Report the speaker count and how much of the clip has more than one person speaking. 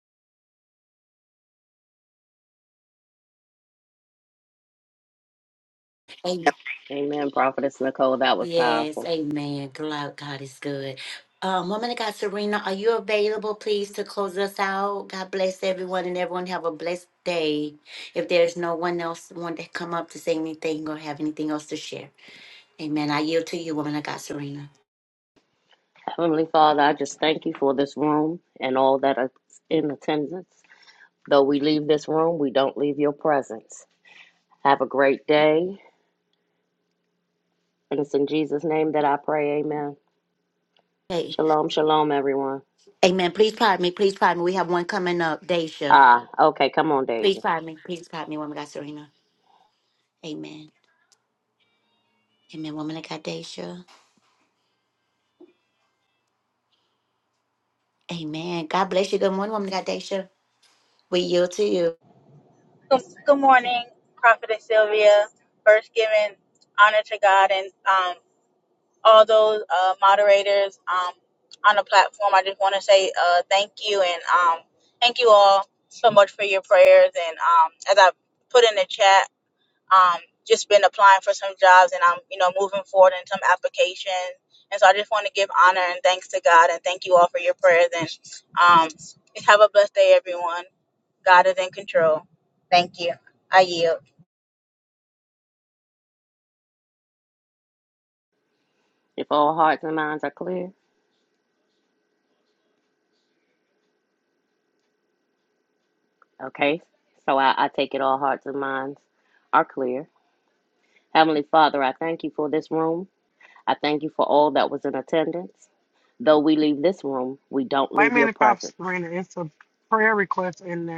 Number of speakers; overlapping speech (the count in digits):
4, about 1%